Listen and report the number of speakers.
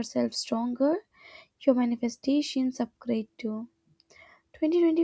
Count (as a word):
one